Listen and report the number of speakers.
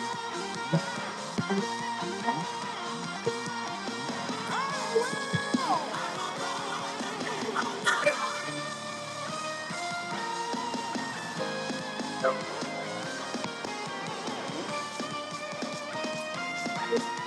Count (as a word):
zero